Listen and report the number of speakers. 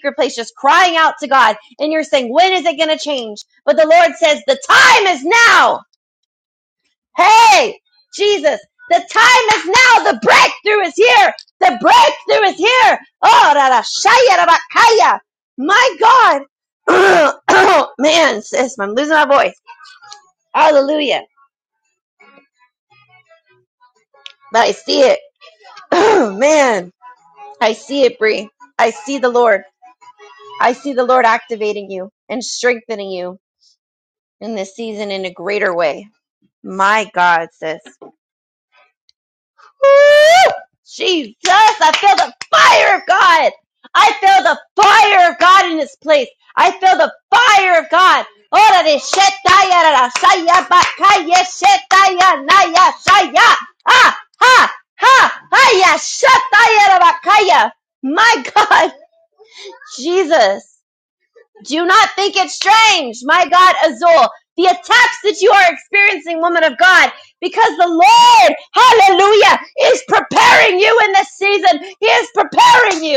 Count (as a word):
one